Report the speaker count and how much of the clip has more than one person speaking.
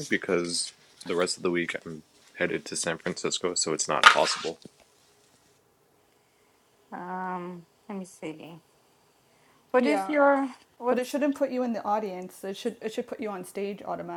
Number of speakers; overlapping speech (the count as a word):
three, about 4%